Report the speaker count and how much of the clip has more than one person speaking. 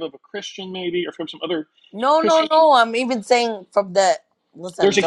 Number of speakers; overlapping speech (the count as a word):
two, about 12%